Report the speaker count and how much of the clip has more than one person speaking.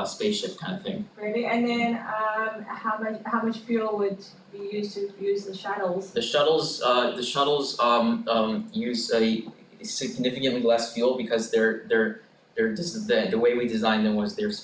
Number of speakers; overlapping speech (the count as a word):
two, no overlap